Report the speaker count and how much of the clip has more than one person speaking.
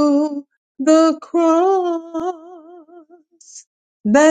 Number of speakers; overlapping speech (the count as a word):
one, no overlap